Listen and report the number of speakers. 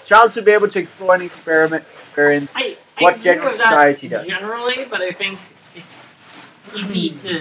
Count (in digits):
2